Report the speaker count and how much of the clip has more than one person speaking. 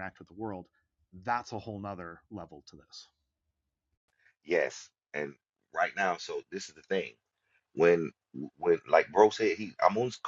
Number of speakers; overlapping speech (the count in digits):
2, no overlap